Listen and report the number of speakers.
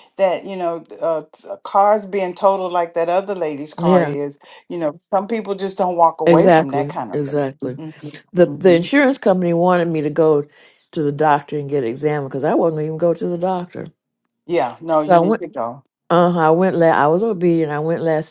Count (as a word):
two